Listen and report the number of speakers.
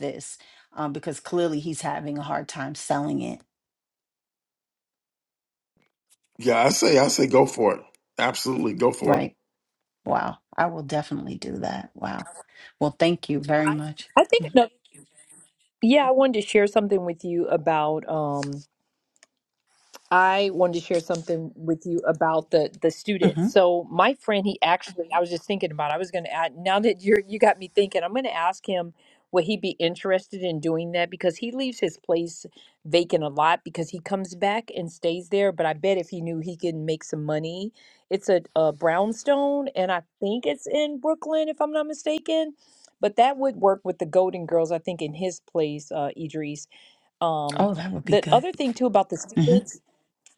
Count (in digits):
3